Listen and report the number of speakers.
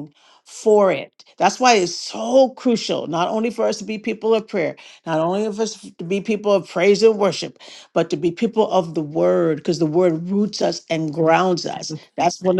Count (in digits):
1